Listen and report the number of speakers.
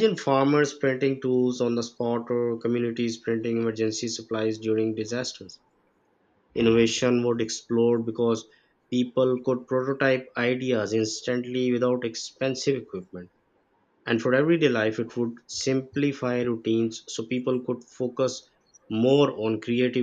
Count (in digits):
1